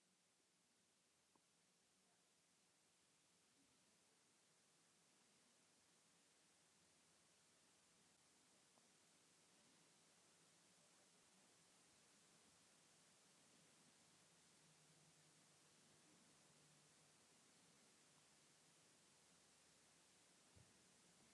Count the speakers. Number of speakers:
zero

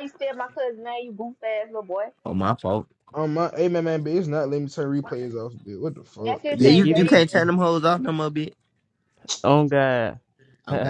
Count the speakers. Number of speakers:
four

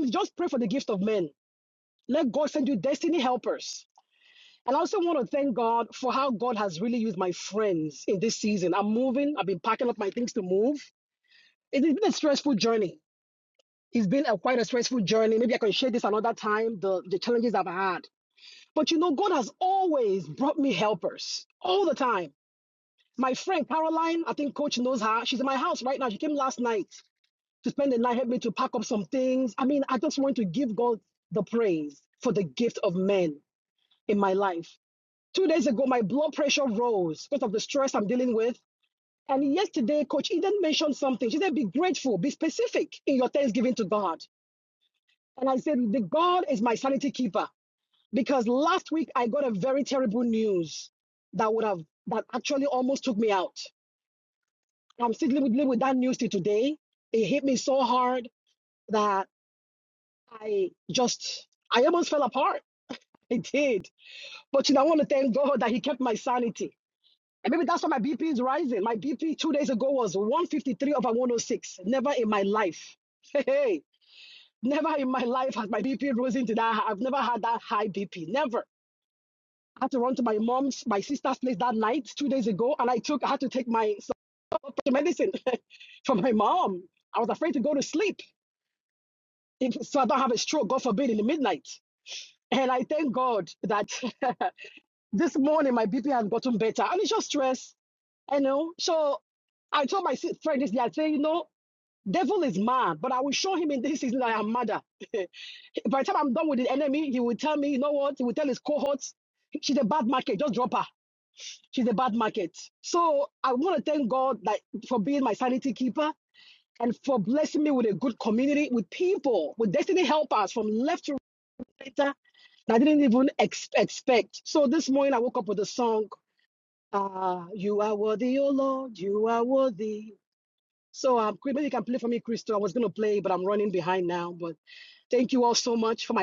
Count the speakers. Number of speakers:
one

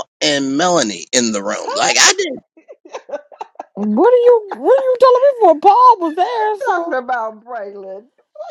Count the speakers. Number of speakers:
three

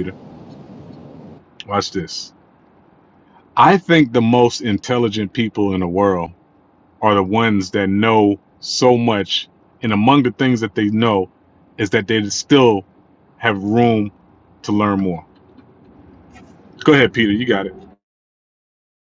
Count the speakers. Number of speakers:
one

